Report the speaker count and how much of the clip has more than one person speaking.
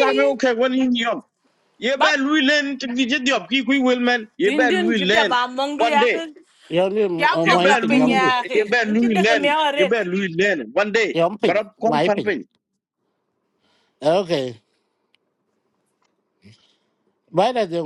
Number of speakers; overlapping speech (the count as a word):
three, about 31%